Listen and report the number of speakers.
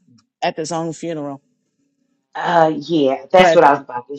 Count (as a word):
two